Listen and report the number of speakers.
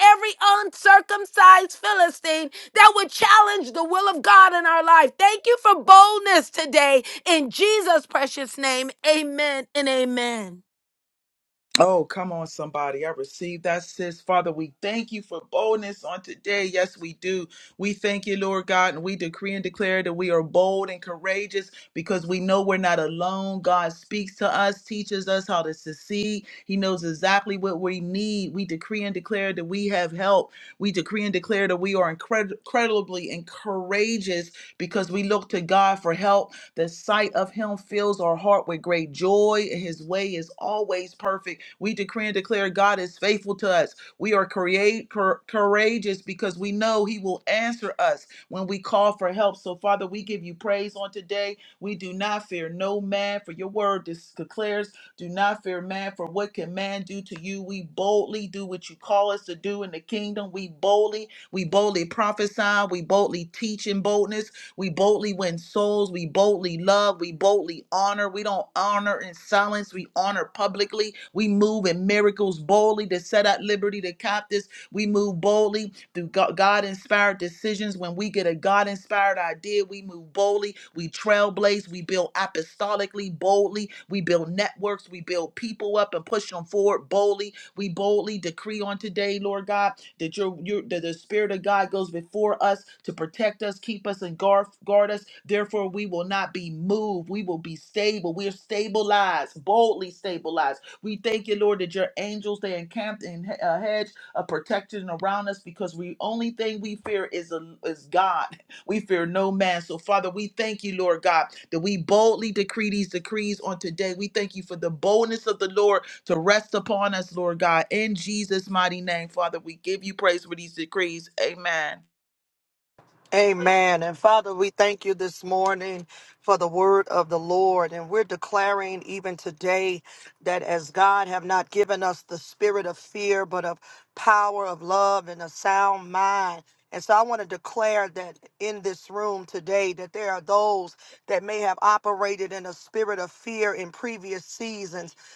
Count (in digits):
3